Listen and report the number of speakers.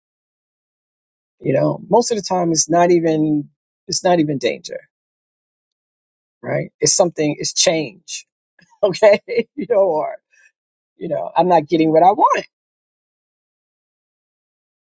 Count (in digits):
1